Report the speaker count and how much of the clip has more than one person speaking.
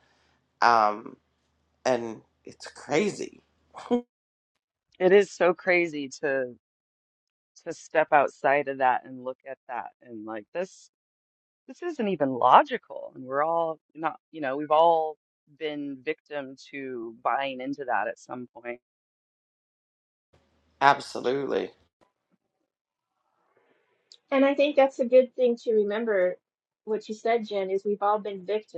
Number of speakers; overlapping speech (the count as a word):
three, no overlap